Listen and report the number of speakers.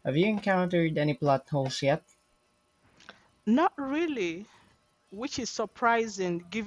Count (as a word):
two